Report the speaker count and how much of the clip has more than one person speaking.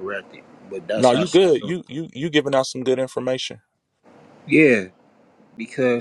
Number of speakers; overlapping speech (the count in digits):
2, about 7%